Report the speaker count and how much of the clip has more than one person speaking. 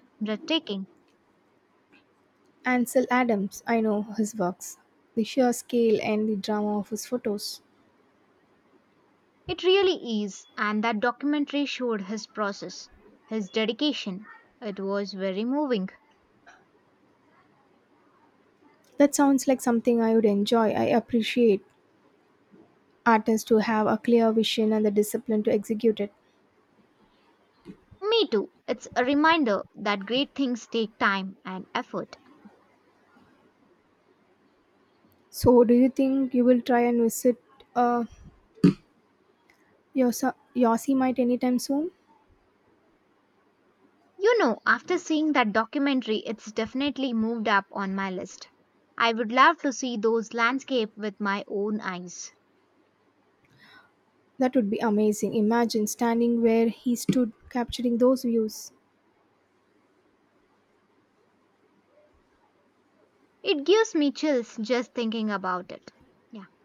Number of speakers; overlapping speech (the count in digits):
2, no overlap